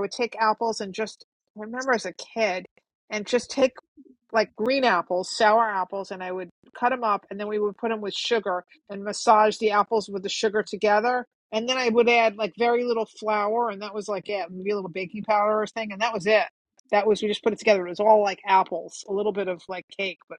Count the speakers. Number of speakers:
1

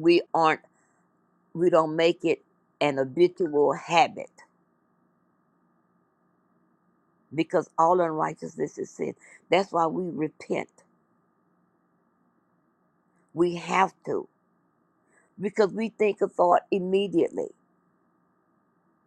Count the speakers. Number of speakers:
1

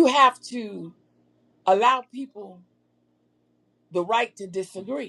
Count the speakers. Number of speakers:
1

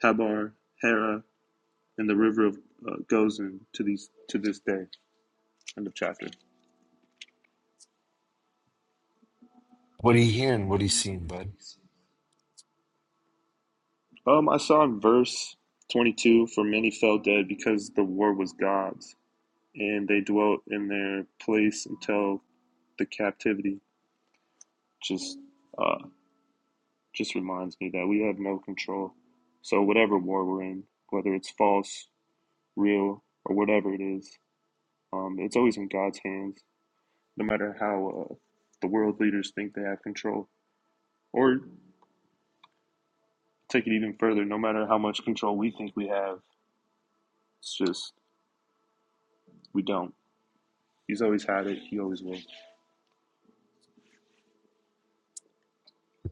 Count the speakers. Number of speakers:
2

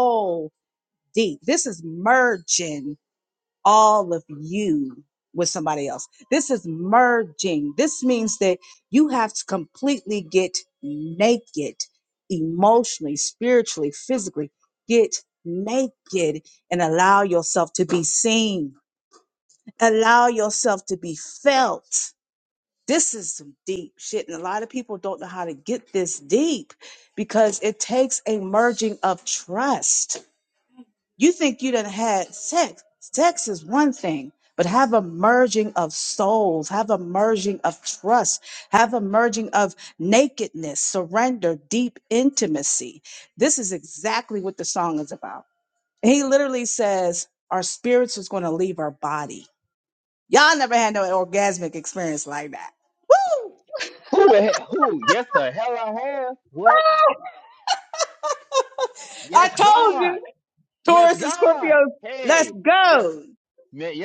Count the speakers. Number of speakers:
2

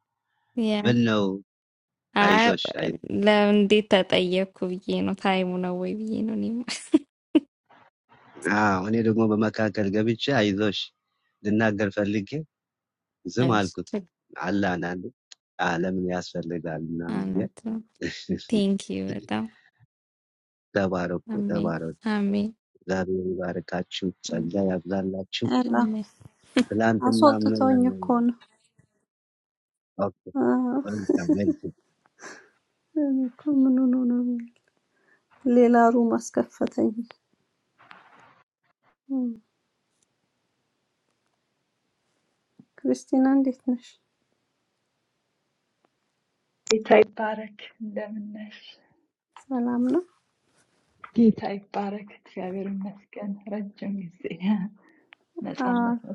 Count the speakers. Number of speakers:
4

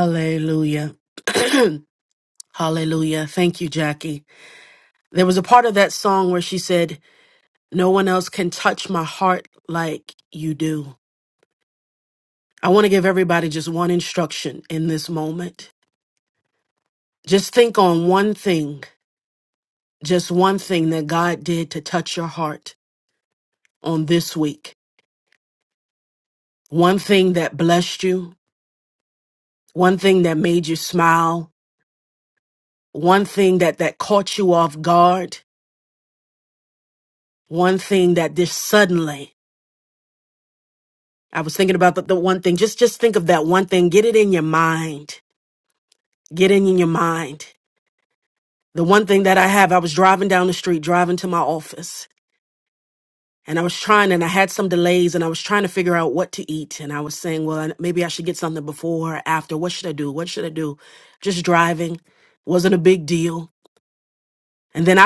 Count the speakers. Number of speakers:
1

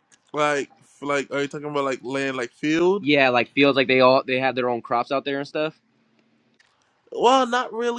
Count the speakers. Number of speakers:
2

